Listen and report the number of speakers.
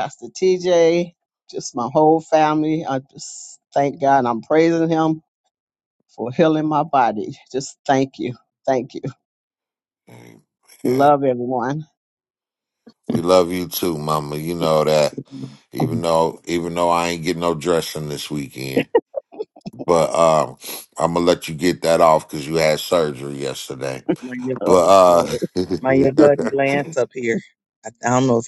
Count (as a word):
three